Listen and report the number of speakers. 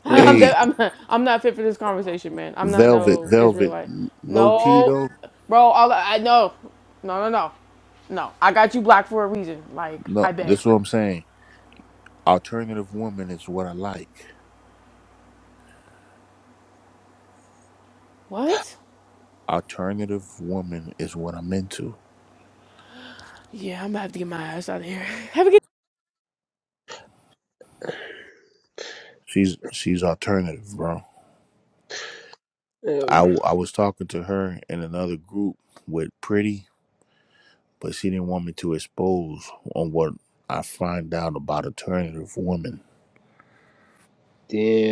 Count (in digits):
3